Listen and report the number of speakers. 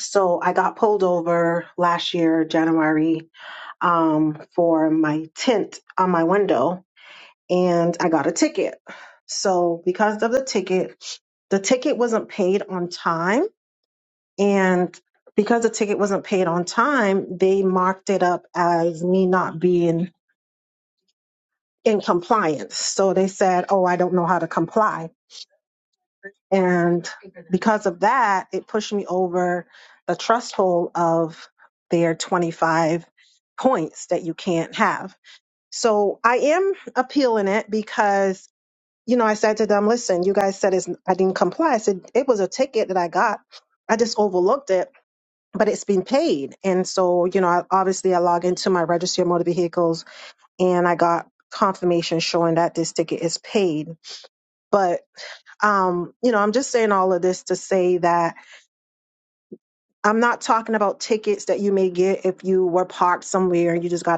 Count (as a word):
one